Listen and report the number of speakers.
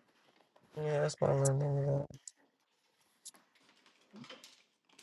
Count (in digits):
1